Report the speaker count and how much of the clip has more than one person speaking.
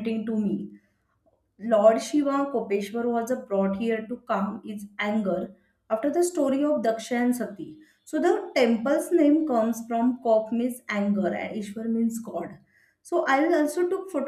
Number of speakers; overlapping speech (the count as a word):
one, no overlap